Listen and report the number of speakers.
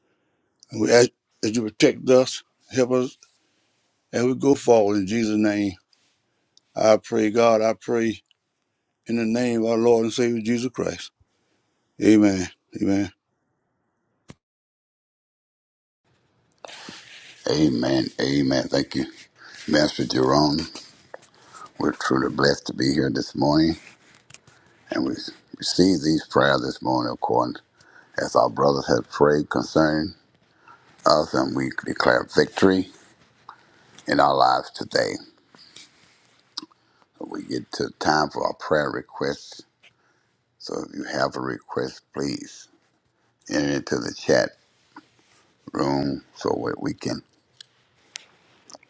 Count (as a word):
two